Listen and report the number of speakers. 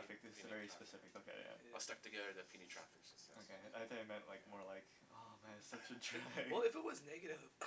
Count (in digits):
3